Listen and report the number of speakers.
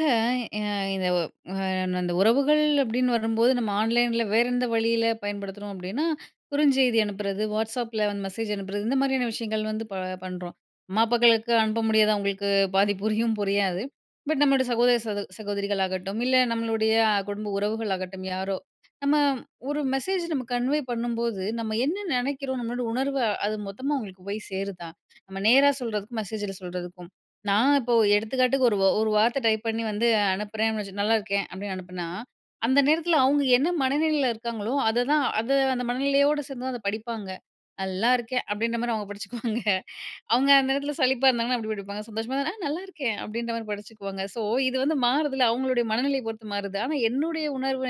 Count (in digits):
1